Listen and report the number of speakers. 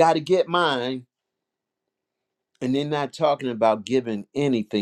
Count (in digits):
1